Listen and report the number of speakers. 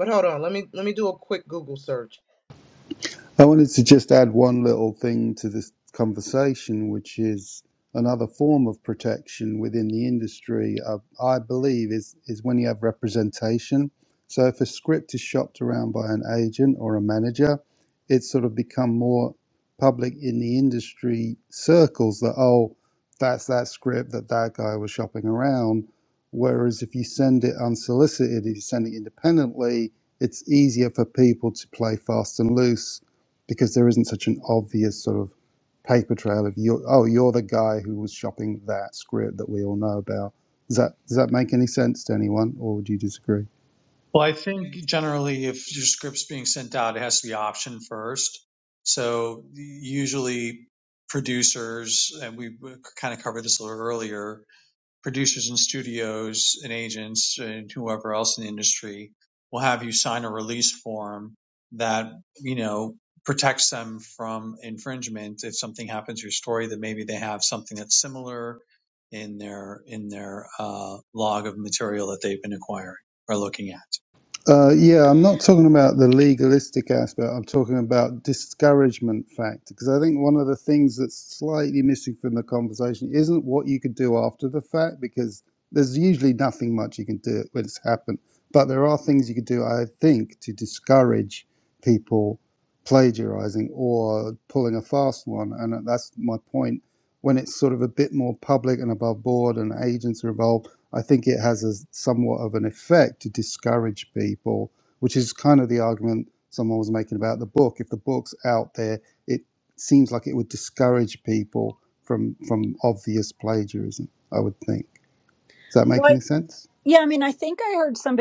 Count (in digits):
4